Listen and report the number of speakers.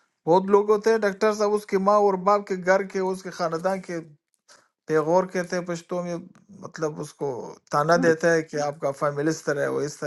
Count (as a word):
one